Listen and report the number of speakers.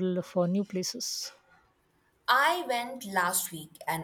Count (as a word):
two